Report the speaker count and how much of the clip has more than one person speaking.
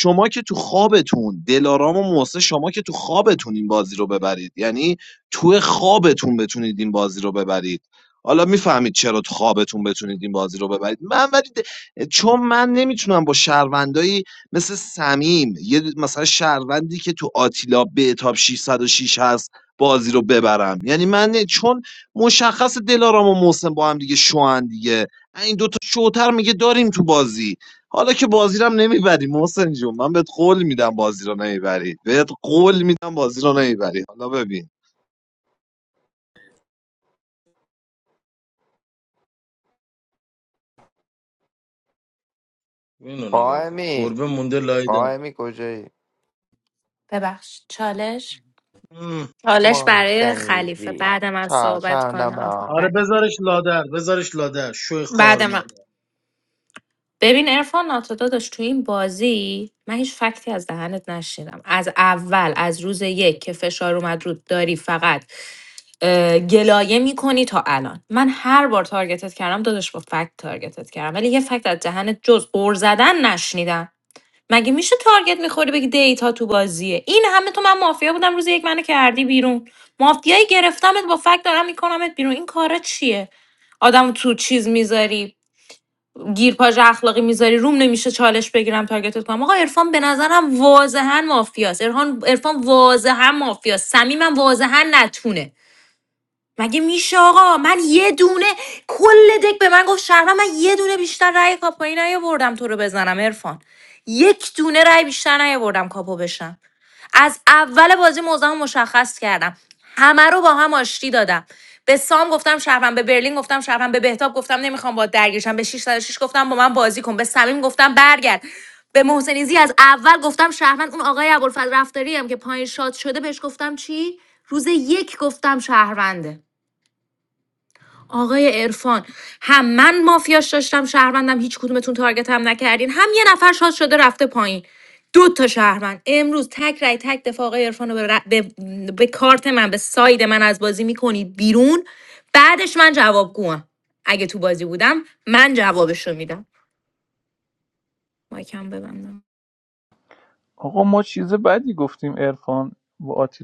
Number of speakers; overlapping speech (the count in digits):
5, about 3%